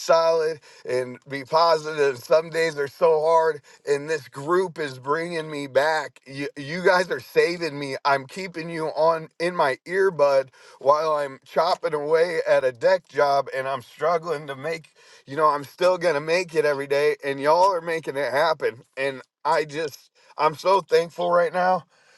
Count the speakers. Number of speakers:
one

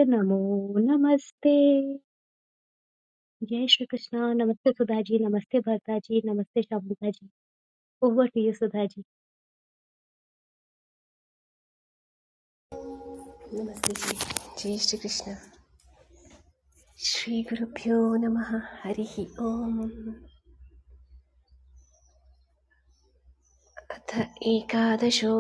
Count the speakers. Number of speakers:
two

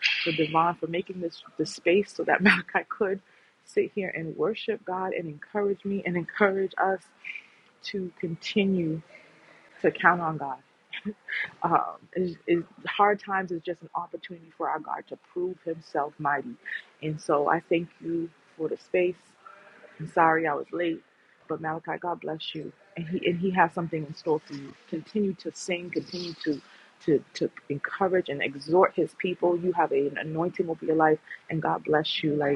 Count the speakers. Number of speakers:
one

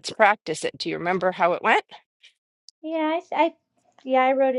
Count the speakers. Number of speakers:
two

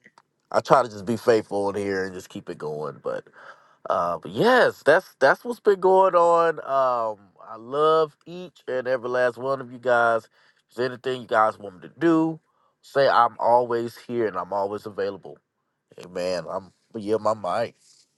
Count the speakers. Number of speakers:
one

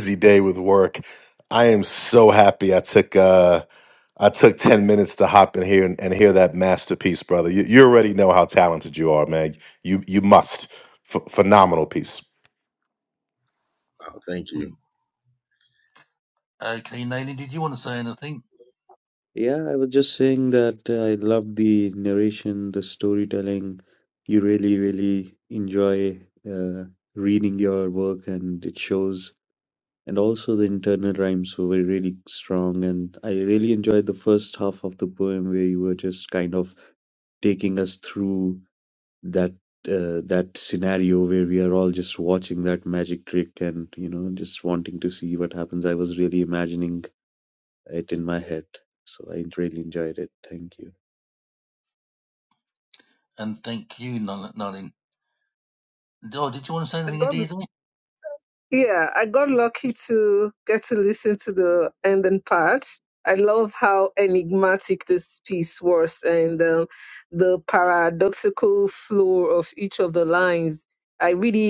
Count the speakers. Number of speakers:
four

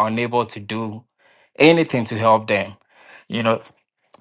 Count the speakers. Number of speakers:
one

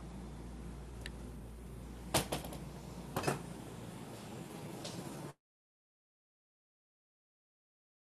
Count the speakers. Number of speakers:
zero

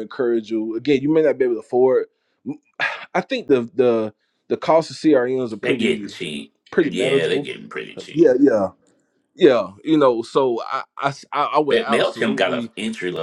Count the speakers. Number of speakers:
two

